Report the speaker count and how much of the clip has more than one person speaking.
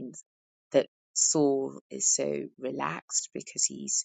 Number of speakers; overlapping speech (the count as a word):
one, no overlap